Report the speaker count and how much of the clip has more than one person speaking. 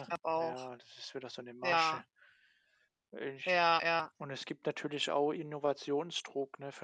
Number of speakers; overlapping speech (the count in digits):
2, about 16%